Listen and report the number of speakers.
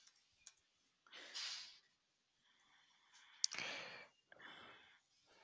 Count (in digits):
0